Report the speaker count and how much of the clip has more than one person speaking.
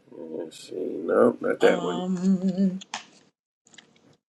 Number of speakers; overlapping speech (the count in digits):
2, about 10%